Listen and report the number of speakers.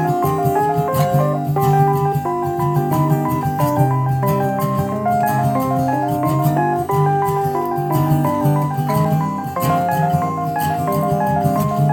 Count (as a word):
zero